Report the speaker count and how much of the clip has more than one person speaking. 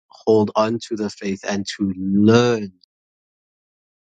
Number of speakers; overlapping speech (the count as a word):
one, no overlap